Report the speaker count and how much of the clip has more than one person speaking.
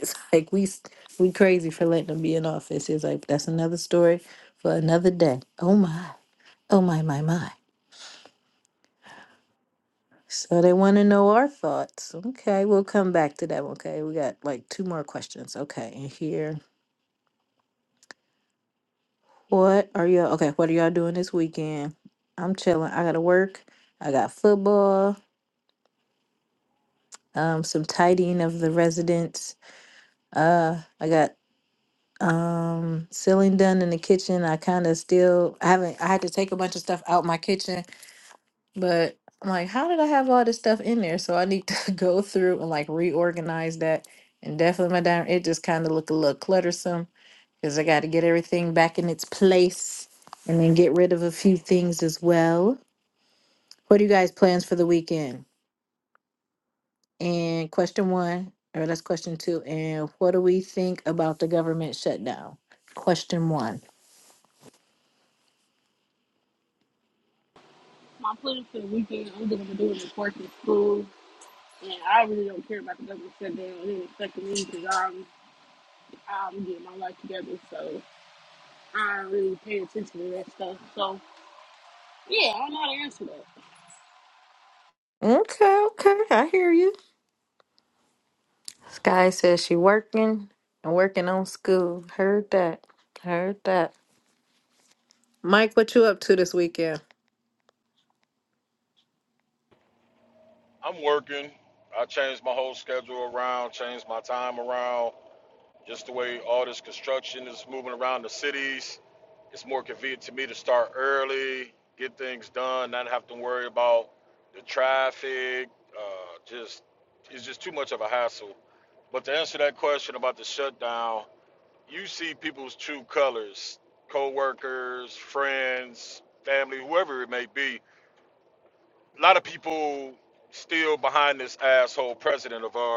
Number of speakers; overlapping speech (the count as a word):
three, no overlap